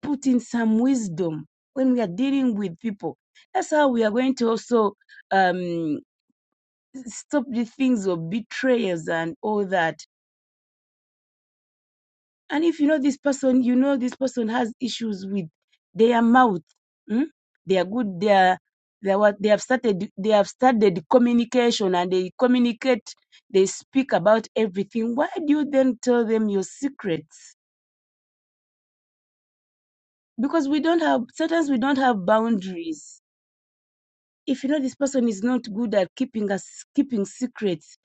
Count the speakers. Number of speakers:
one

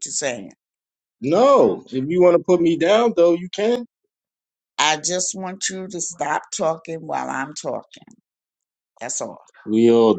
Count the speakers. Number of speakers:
two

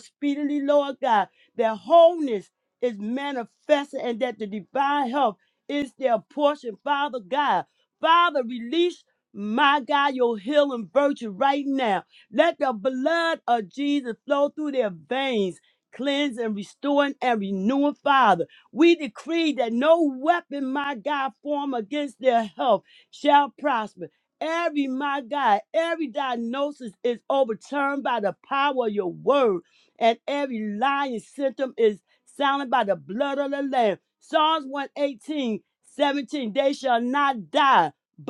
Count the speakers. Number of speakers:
one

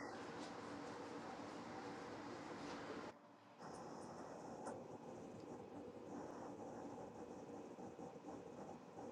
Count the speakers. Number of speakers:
zero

